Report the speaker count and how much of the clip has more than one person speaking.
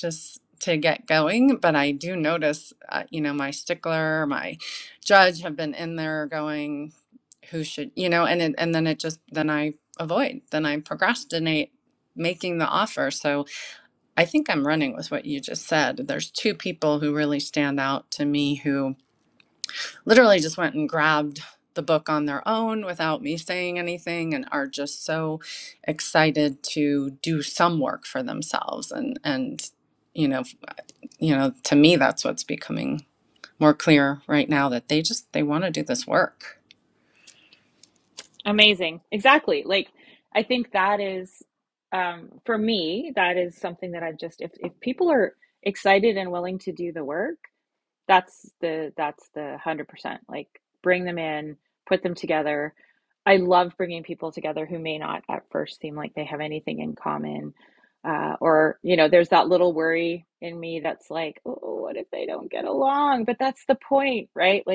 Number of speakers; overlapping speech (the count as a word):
two, no overlap